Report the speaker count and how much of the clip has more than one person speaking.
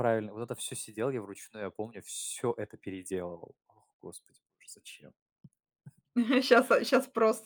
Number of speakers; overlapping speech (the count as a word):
two, no overlap